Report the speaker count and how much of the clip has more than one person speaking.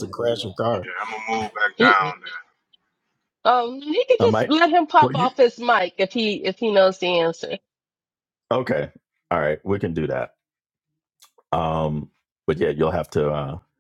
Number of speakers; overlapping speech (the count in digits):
3, about 7%